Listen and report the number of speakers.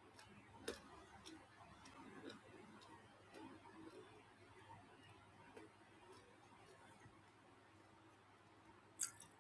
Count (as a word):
zero